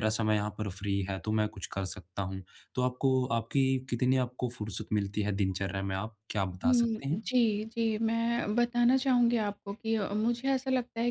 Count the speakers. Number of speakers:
two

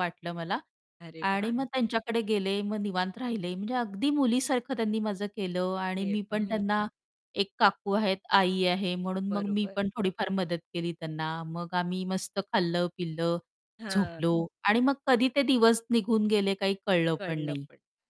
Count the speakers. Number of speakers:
two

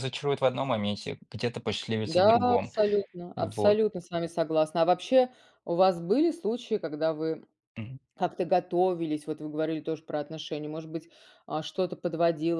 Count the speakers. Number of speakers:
two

